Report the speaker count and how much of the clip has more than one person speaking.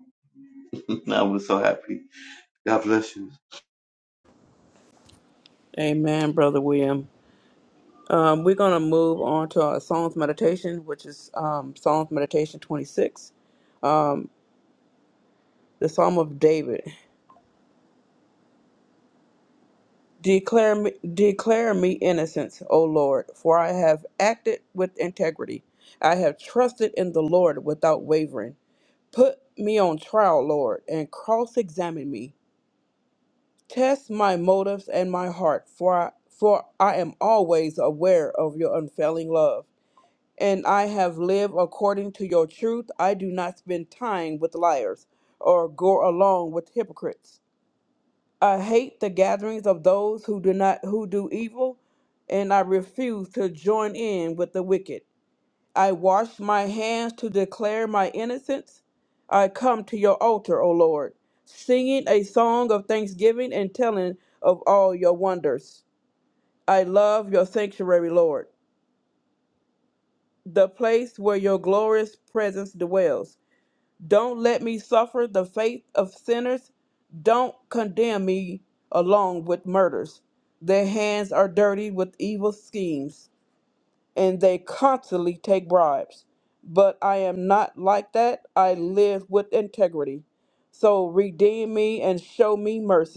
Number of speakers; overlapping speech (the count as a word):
two, no overlap